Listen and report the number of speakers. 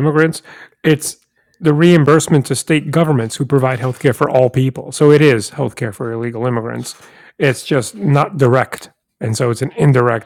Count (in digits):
1